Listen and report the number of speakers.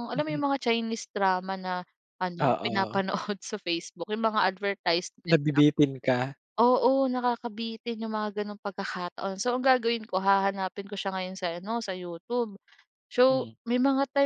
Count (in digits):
2